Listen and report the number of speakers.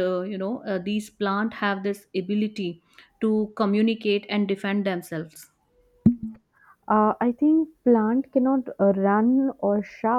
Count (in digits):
2